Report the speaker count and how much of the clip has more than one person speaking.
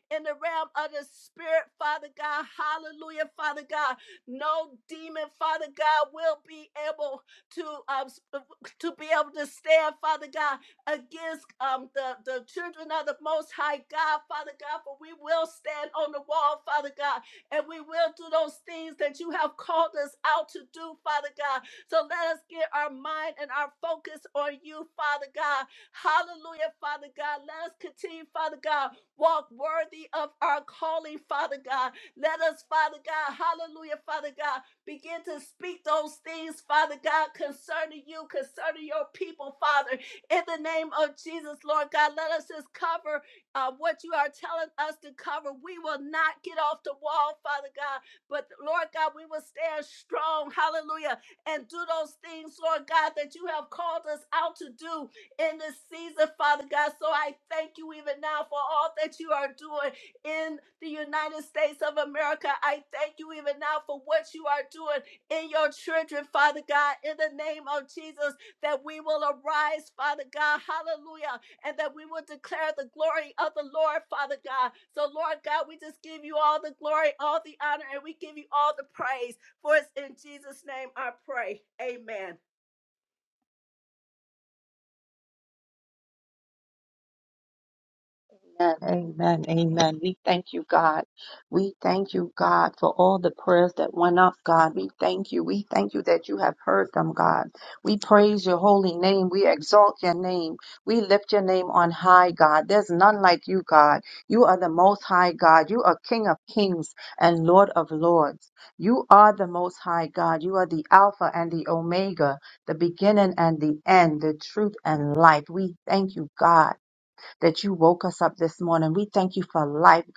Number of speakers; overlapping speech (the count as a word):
two, no overlap